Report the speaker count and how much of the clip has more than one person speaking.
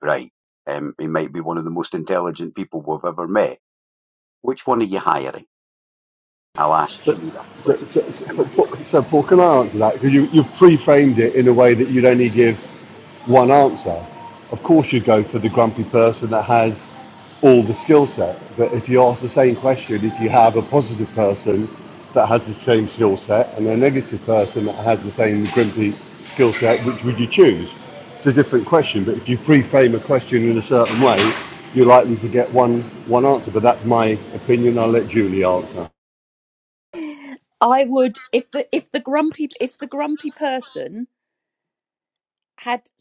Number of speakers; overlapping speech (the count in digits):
3, about 2%